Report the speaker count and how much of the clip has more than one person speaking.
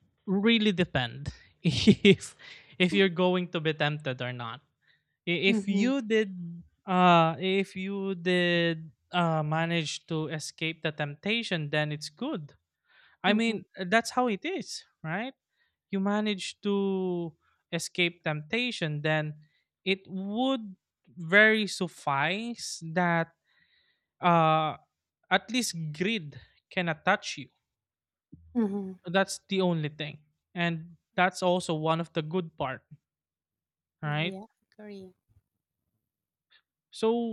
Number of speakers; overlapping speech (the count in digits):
2, about 3%